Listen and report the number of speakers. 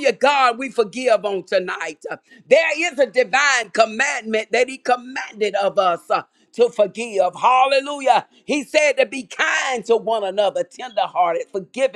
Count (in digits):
1